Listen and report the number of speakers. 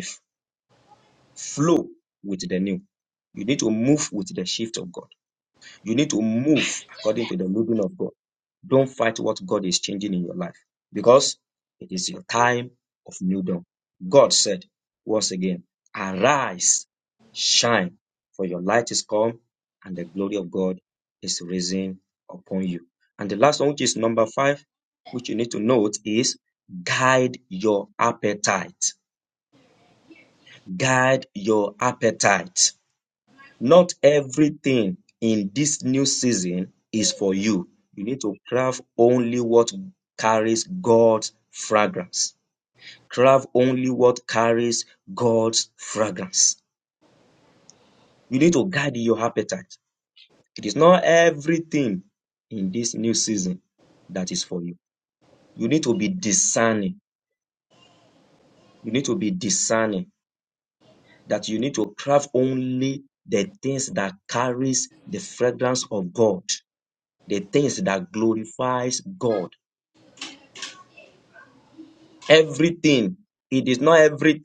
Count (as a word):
one